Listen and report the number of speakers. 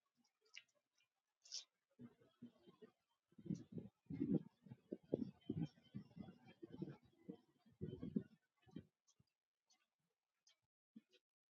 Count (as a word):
zero